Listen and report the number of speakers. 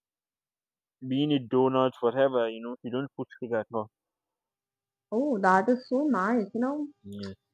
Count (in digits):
2